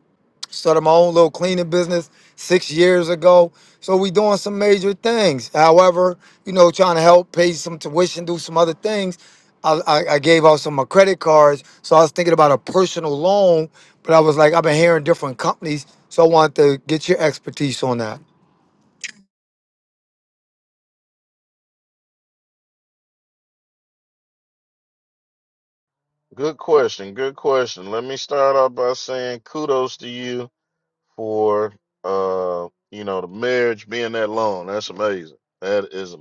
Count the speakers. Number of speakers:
2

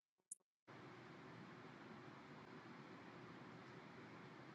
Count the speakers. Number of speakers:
0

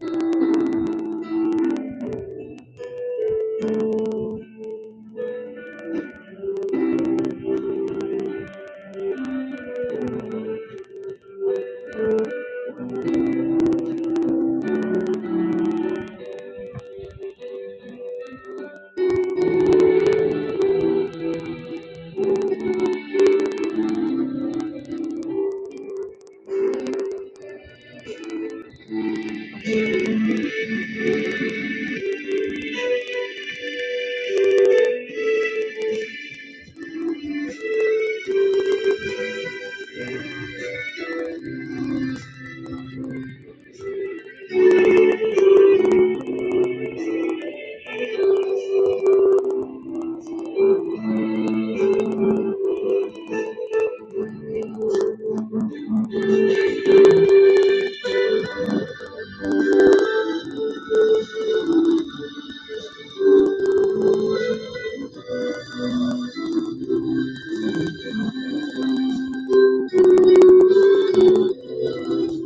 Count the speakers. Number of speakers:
0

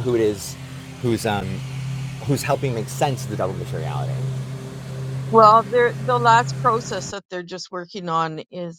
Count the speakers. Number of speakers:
2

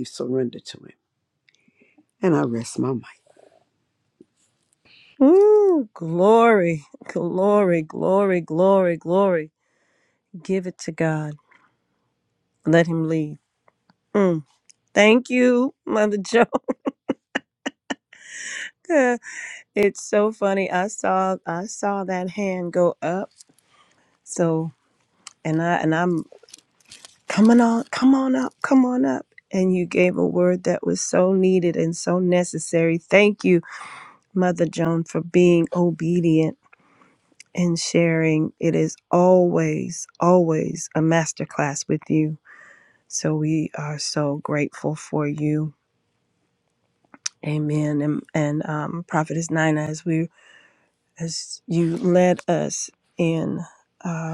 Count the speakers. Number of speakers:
2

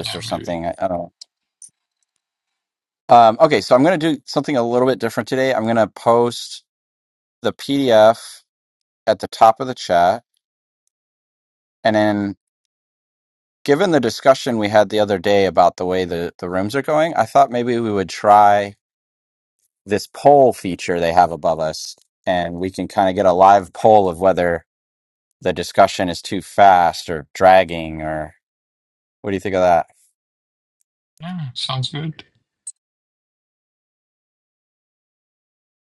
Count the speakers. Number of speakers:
2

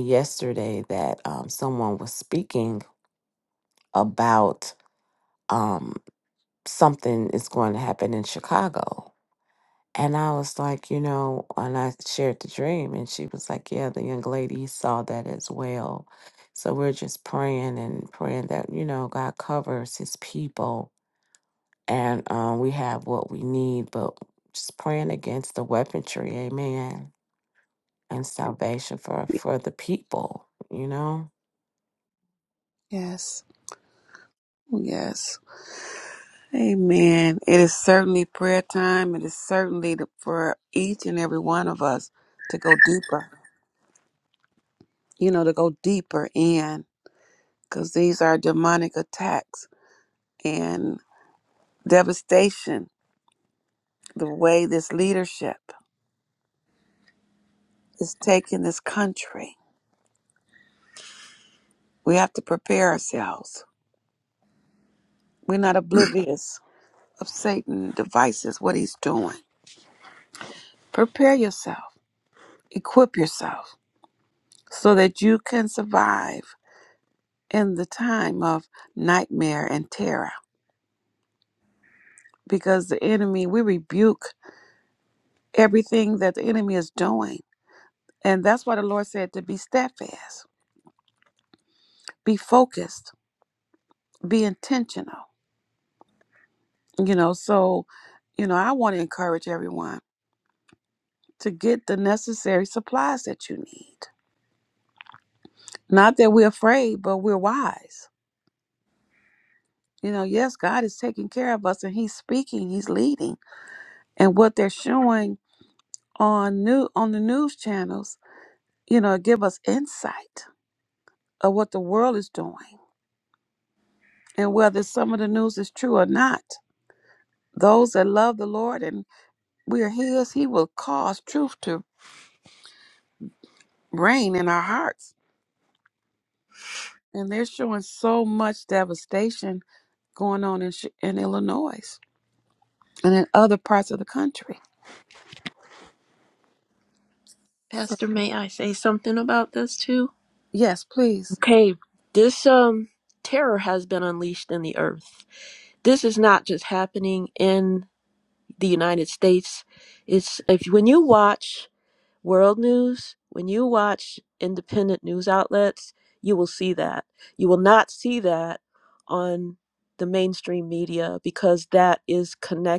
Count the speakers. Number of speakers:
3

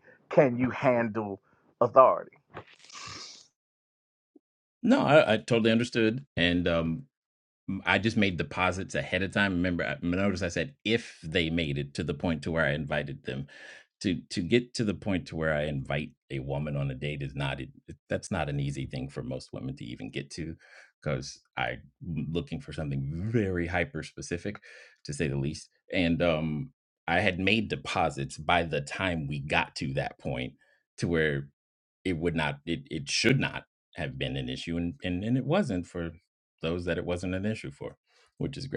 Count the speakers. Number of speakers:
2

